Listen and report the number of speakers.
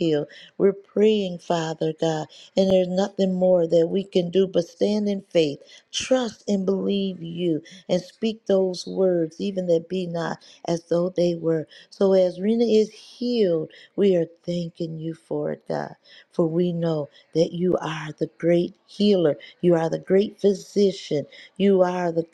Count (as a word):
one